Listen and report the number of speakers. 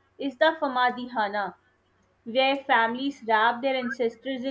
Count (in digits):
1